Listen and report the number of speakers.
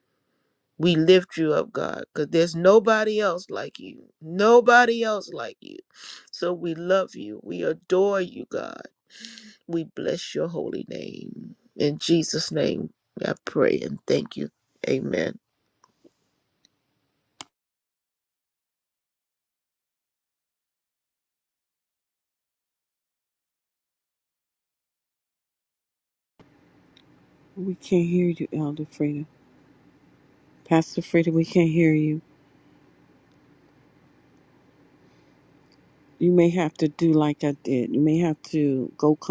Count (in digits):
2